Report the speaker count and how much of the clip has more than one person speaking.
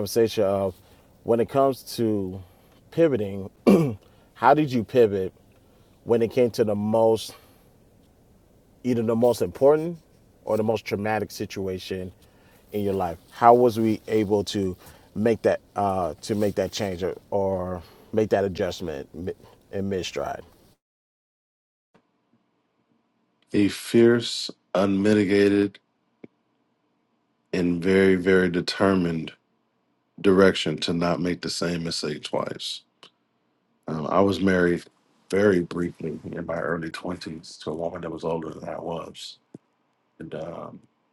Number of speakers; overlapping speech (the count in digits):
2, no overlap